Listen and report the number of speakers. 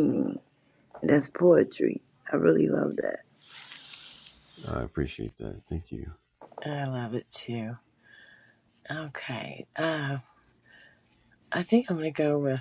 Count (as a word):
three